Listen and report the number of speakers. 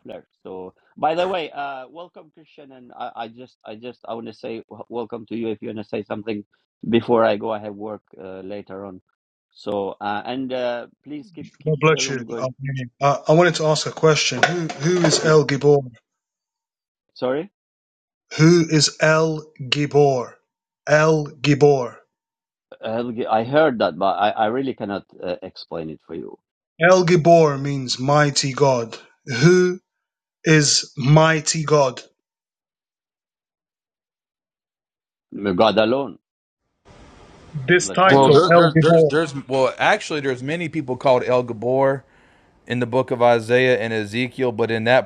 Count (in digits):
3